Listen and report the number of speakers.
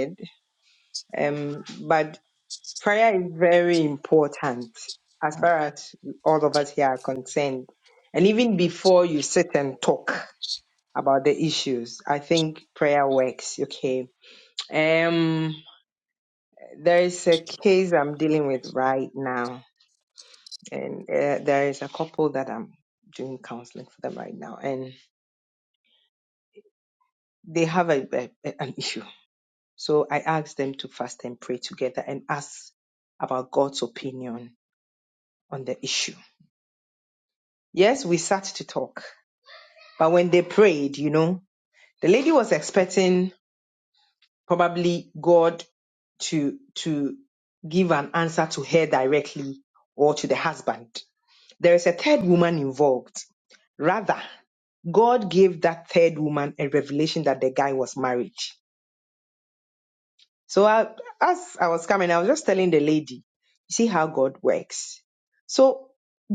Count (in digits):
1